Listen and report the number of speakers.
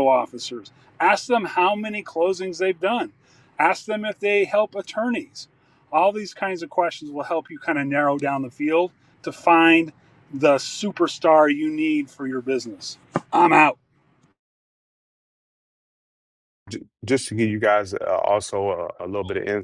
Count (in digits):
2